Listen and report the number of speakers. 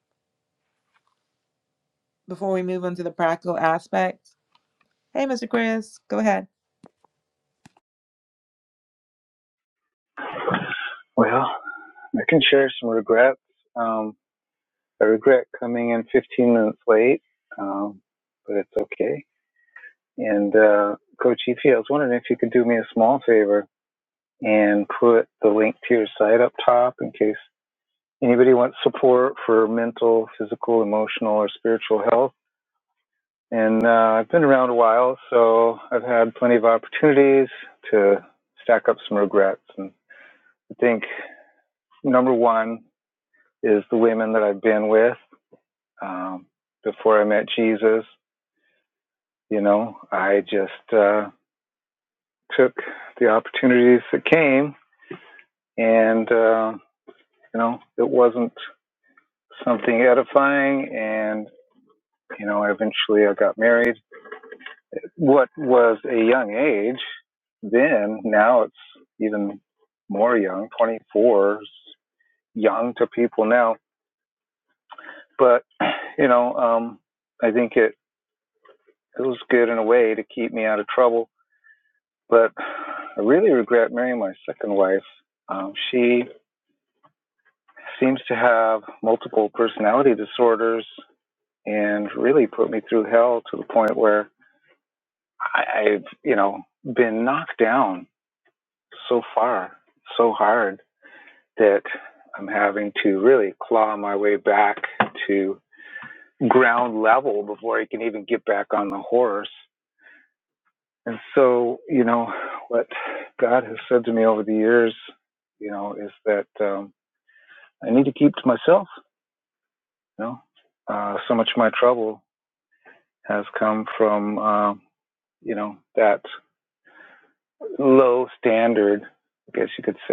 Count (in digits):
2